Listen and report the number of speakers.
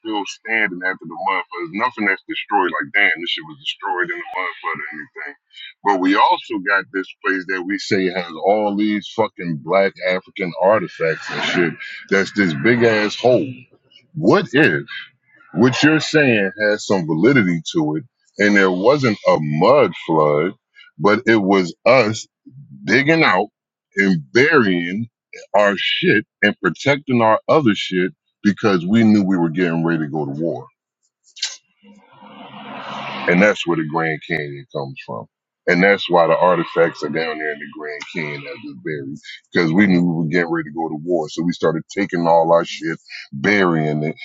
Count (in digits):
1